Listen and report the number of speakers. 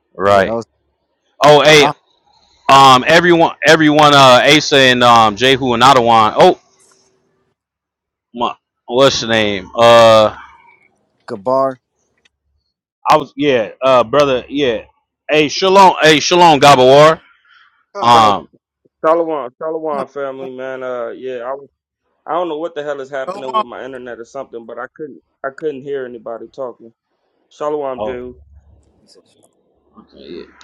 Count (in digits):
3